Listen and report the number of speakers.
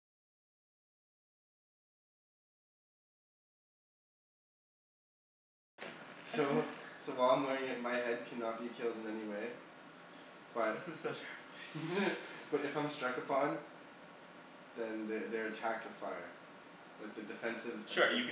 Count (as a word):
two